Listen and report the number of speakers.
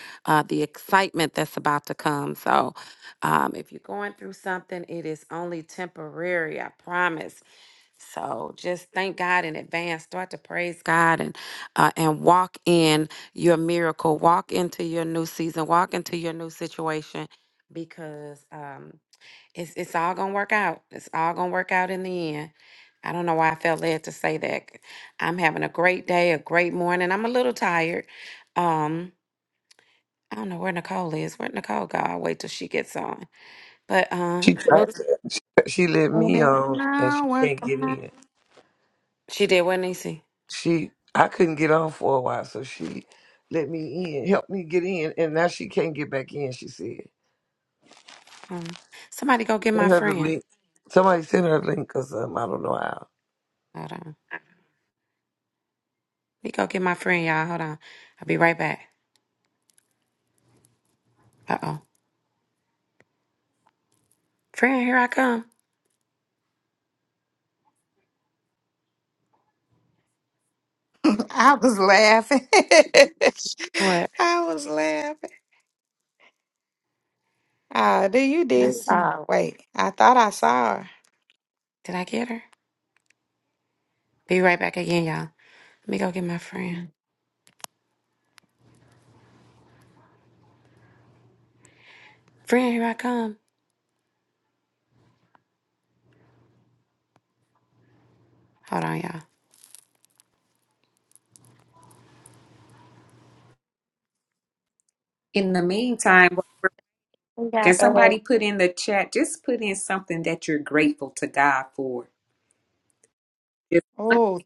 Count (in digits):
4